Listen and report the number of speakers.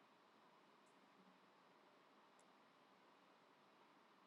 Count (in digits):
0